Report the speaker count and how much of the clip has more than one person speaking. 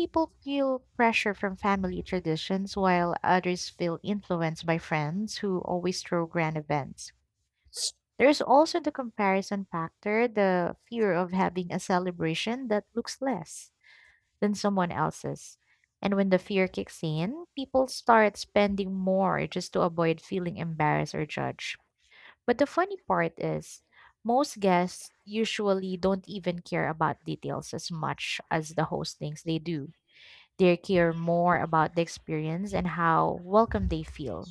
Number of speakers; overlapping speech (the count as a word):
one, no overlap